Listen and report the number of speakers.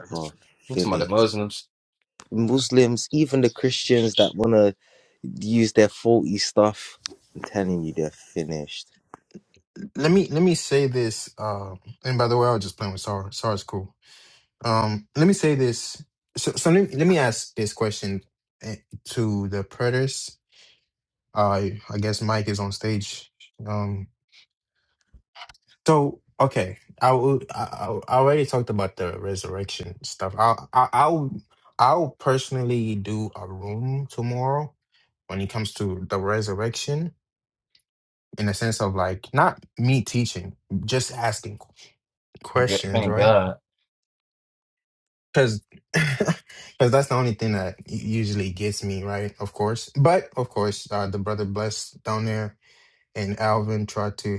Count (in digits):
3